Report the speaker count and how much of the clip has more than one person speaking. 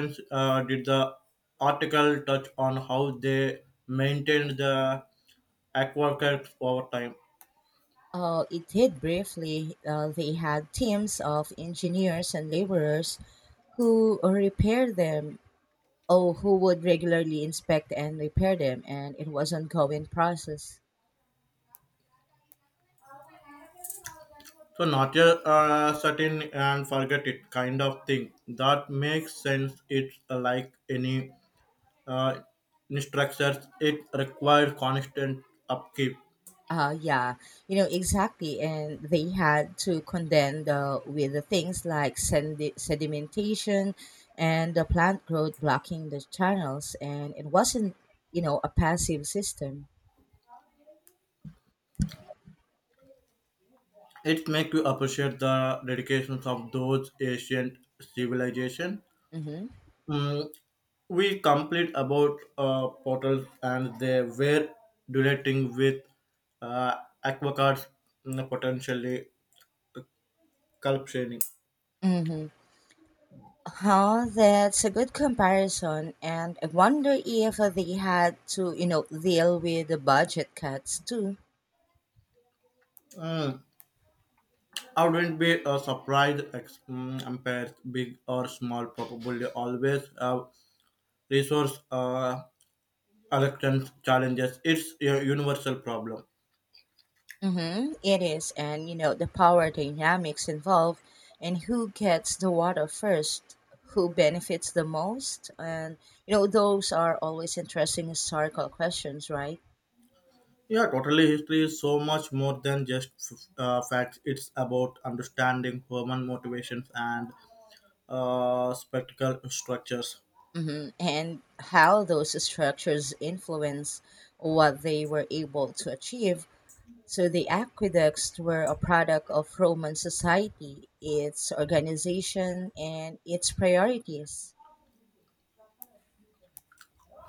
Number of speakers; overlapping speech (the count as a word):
two, no overlap